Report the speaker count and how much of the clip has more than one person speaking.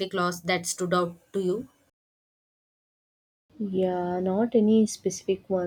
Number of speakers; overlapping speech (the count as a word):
two, no overlap